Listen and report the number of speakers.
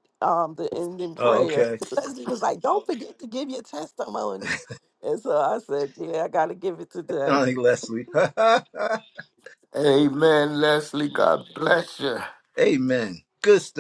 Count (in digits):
3